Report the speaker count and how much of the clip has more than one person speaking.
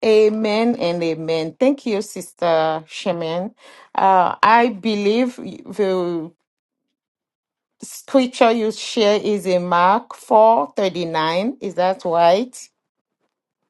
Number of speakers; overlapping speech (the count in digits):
1, no overlap